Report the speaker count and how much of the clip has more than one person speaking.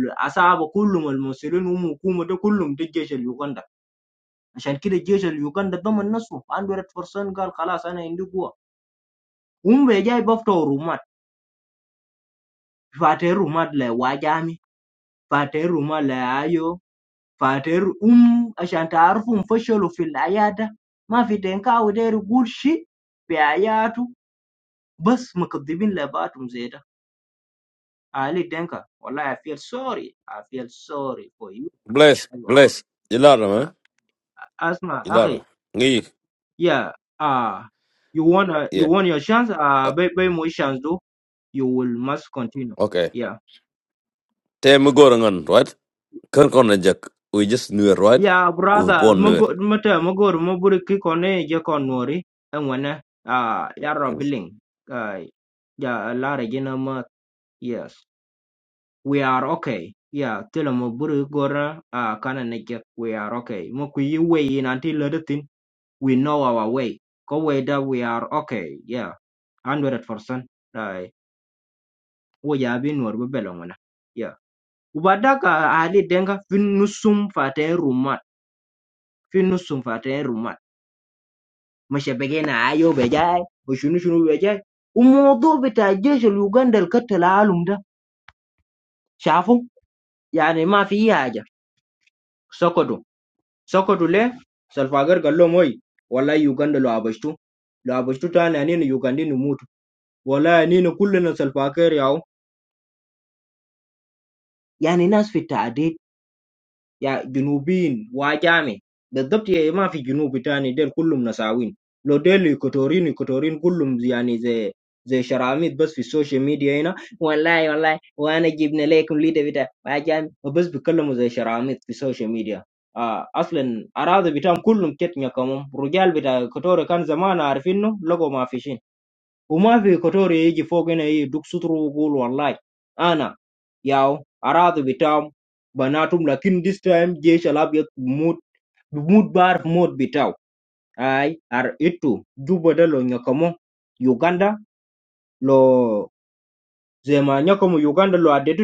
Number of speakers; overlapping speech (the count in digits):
2, about 1%